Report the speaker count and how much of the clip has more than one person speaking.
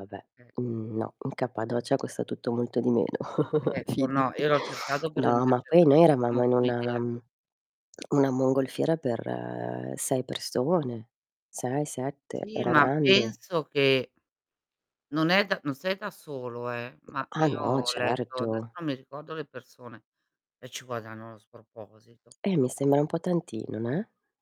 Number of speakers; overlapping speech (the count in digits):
2, about 16%